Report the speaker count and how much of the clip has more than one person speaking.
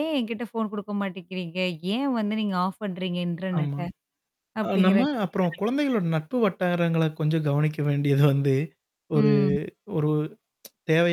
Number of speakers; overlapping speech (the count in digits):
2, about 9%